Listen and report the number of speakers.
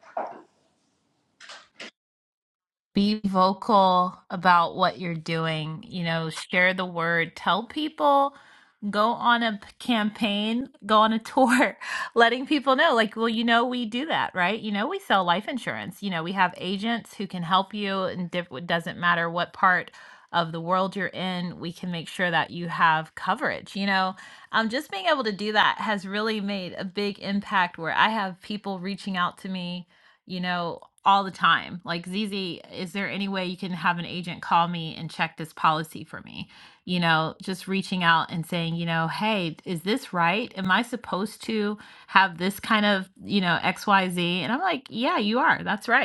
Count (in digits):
1